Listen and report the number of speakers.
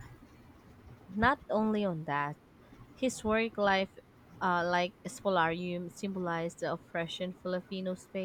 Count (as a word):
one